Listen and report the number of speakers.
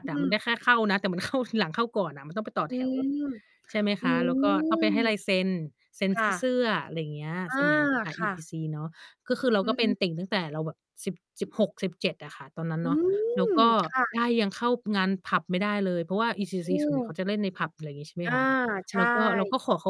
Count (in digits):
2